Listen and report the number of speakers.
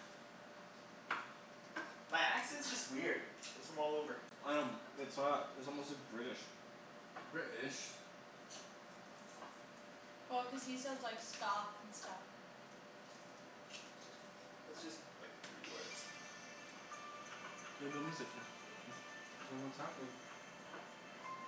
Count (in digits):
4